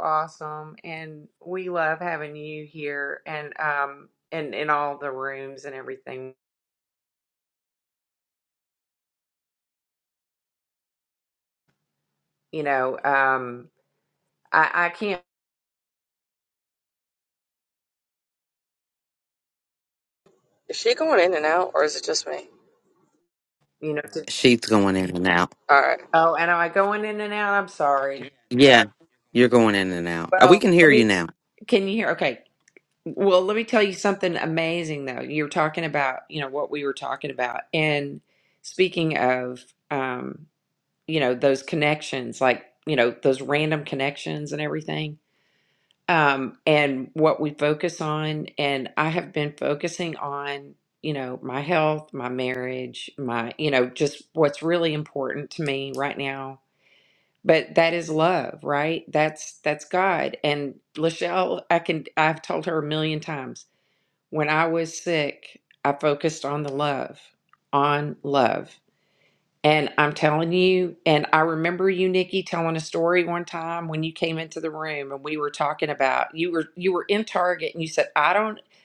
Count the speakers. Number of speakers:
3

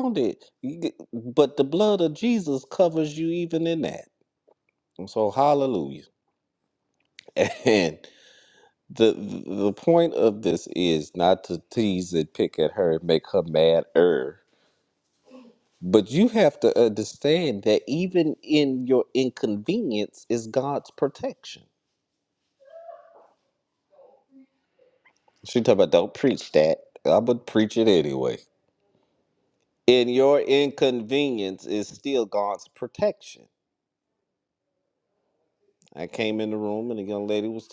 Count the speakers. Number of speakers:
1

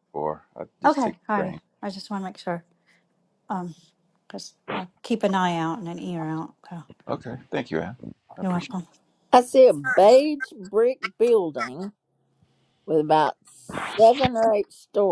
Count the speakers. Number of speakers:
3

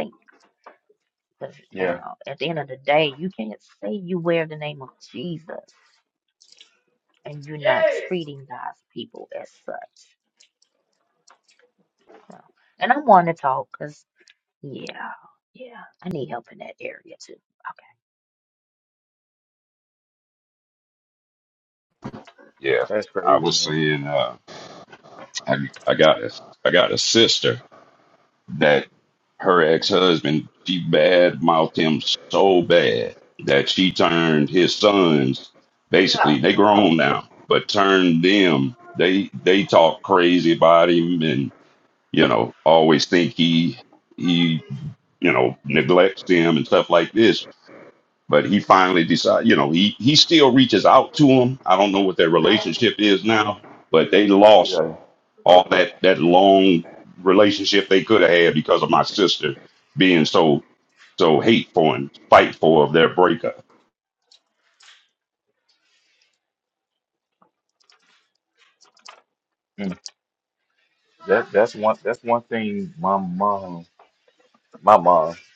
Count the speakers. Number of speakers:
3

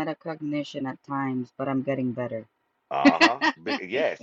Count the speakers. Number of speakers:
2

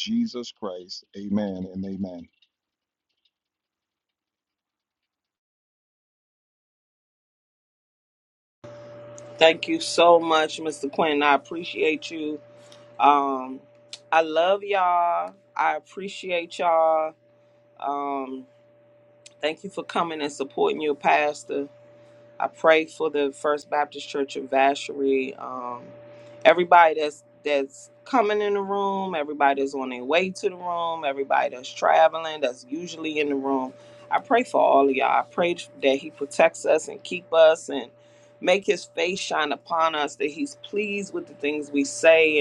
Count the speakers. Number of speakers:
2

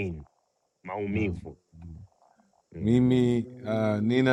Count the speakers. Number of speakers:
2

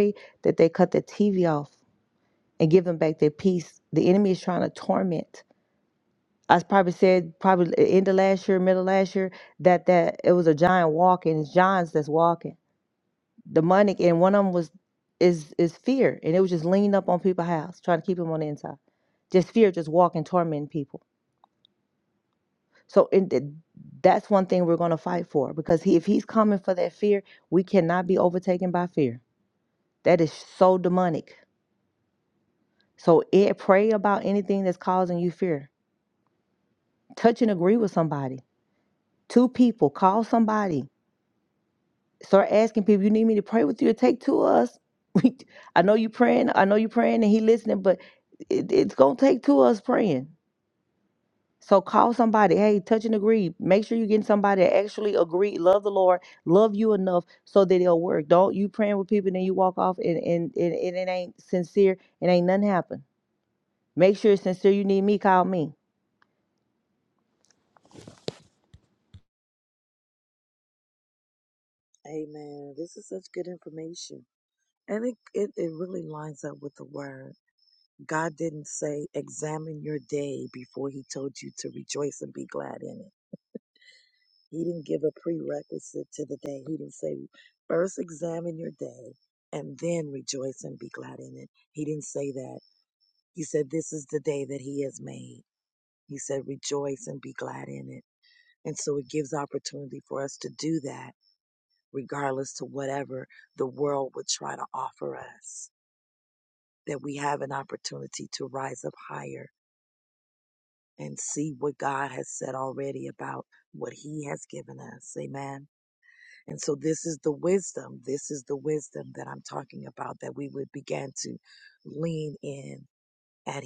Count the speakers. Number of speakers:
2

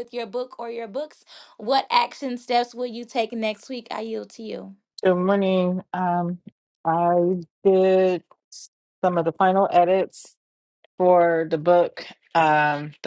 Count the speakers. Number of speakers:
2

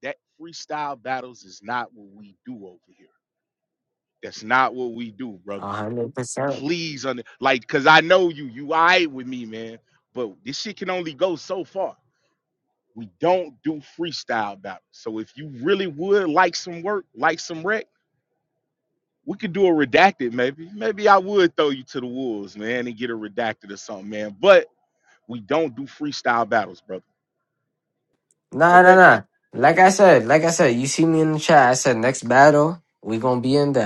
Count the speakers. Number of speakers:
2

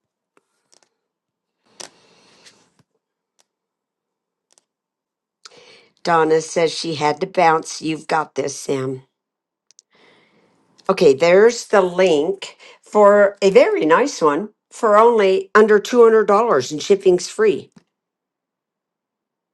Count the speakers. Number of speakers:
1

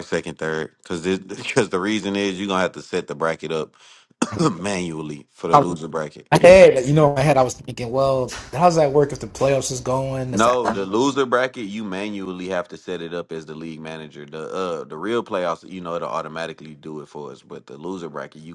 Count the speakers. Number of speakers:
2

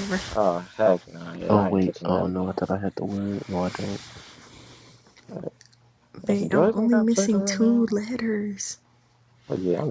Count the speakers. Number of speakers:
3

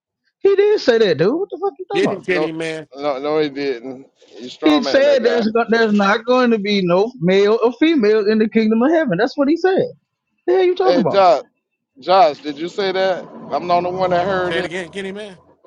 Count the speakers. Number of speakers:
3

